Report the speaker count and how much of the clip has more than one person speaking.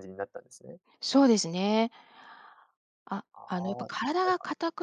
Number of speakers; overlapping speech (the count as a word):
two, about 15%